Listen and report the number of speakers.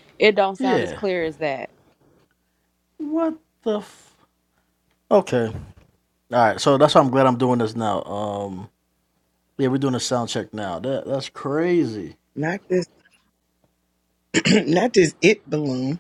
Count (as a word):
three